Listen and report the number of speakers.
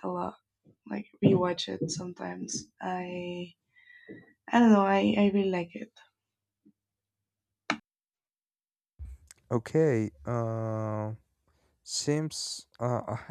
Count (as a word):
two